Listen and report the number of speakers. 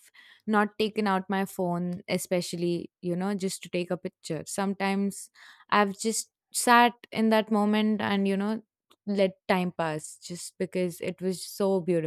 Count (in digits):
1